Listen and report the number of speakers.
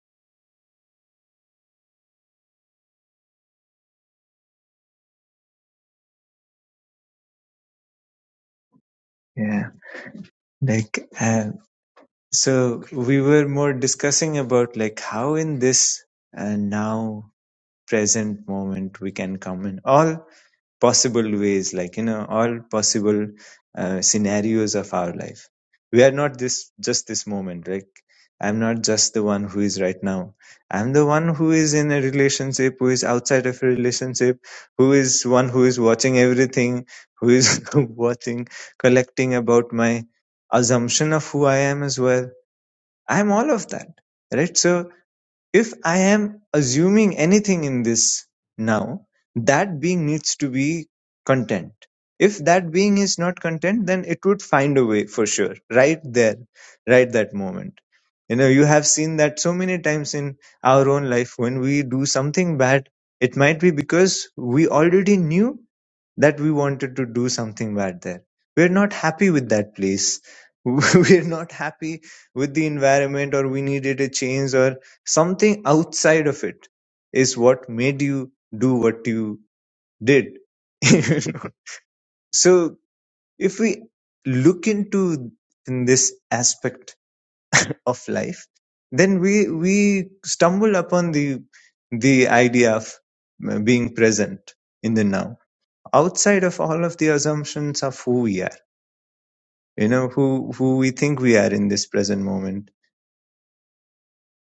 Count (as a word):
one